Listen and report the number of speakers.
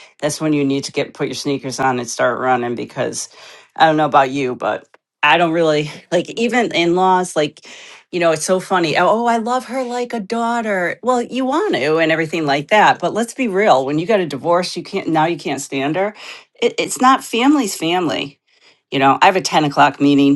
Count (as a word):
one